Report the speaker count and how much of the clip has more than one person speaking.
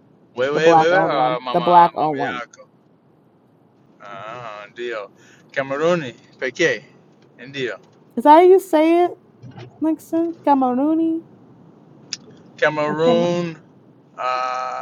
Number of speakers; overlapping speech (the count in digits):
2, about 15%